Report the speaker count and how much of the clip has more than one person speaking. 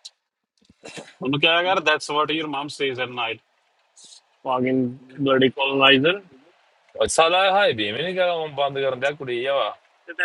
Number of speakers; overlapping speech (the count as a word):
three, no overlap